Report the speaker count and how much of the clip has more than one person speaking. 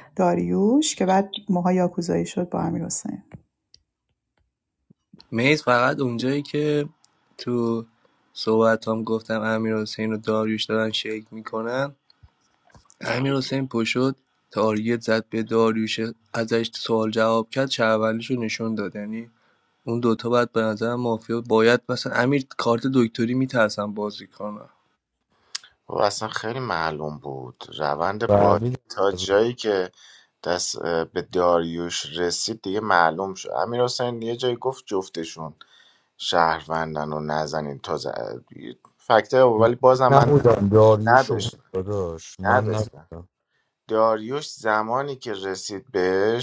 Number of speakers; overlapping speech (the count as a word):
four, about 4%